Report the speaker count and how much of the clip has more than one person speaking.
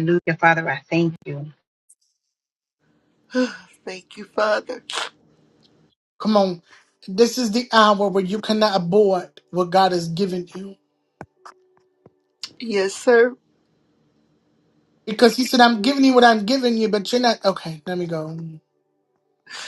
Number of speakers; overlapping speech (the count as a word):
three, no overlap